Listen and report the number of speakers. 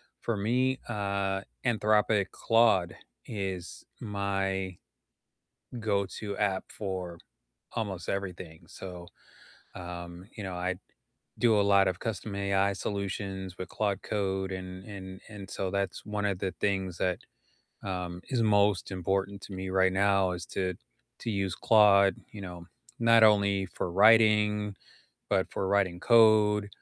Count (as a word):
one